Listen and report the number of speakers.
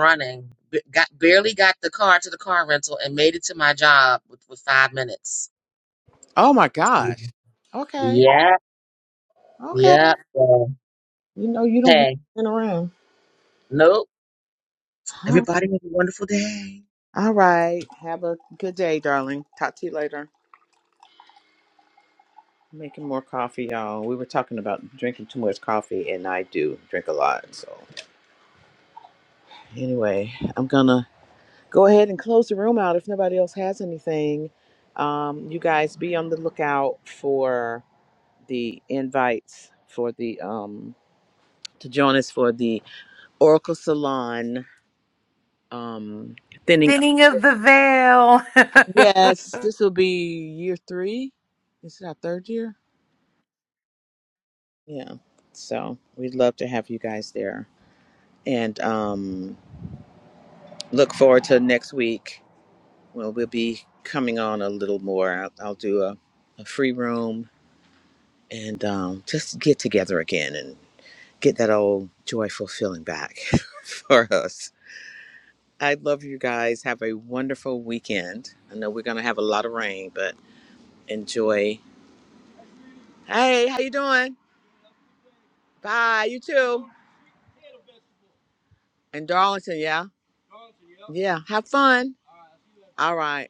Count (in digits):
3